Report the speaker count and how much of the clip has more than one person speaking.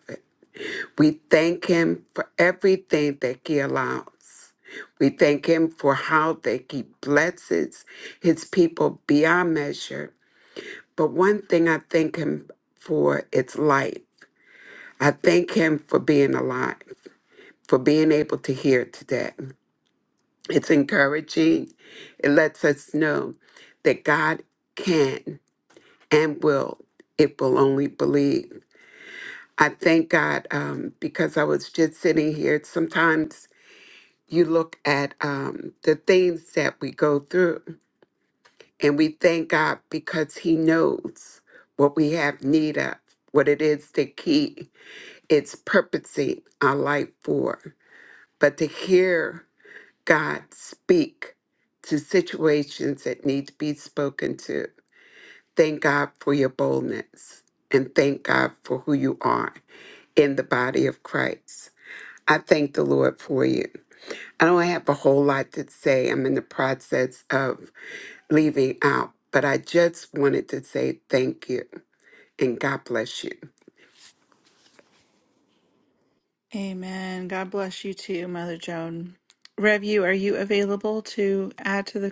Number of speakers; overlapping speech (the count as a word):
two, no overlap